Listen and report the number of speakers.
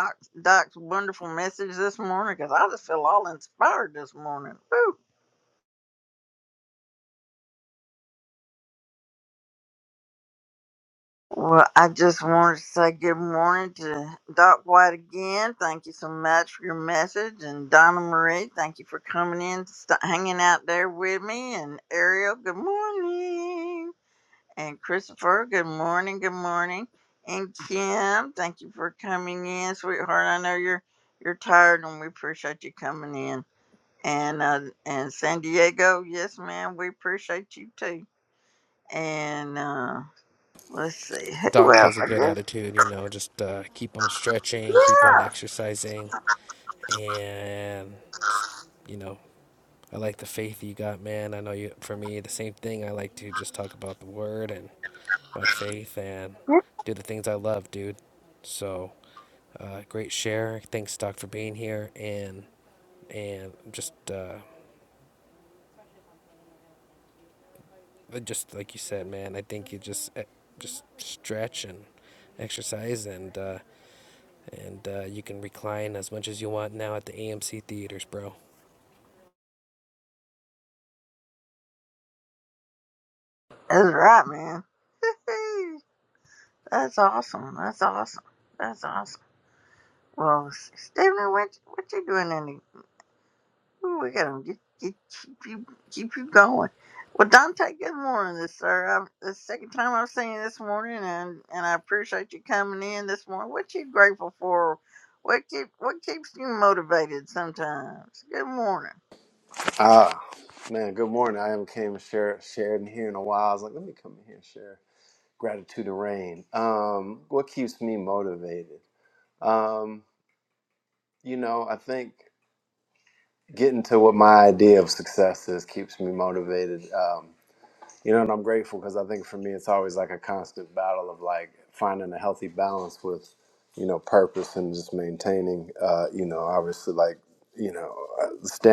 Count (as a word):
three